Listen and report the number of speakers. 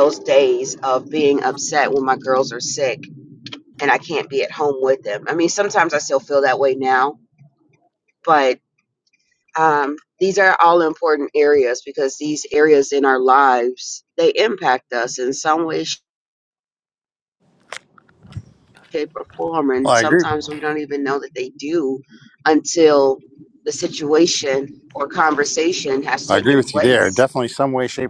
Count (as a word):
two